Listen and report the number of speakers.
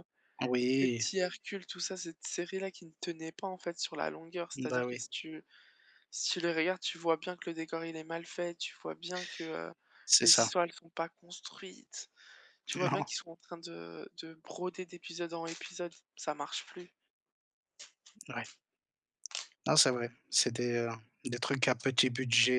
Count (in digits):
2